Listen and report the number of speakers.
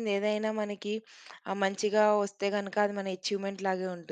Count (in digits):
1